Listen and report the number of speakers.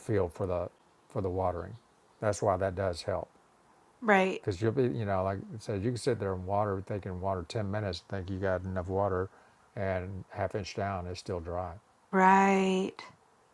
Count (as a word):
two